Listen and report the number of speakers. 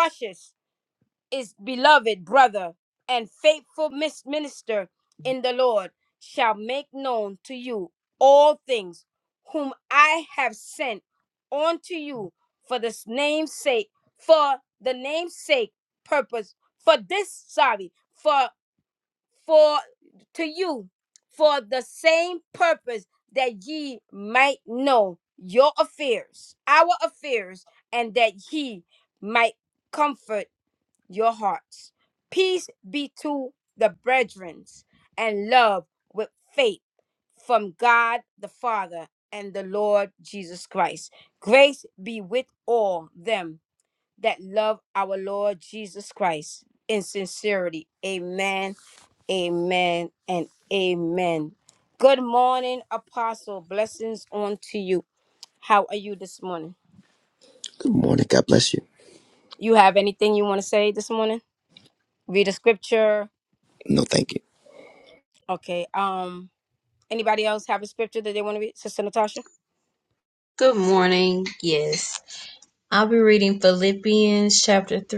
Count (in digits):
3